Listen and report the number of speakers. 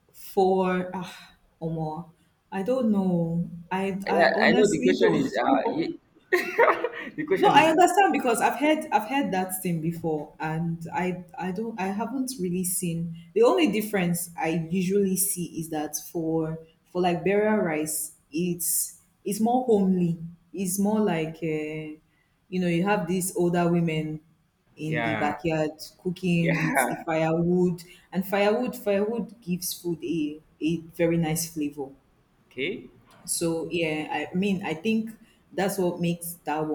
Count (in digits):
2